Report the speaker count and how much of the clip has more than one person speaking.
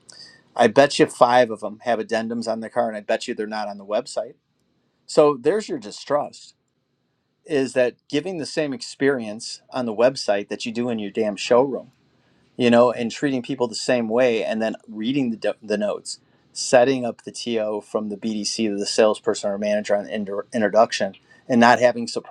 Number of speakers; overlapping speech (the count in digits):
1, no overlap